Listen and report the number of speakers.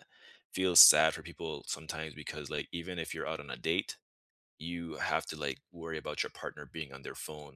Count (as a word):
one